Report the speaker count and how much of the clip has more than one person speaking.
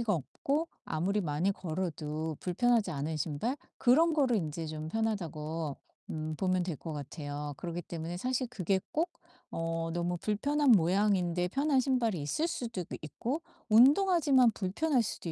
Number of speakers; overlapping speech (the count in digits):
1, no overlap